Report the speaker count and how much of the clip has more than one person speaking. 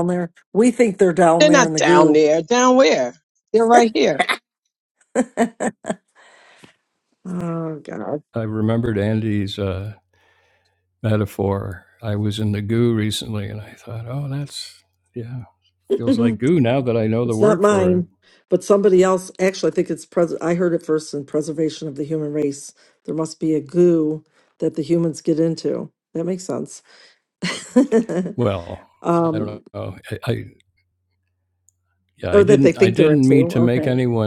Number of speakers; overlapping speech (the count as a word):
three, about 10%